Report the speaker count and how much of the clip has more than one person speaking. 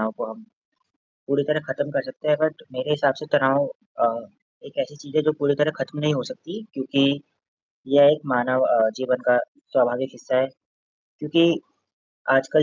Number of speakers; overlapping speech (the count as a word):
one, no overlap